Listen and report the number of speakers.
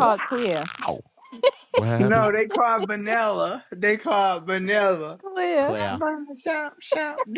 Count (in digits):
3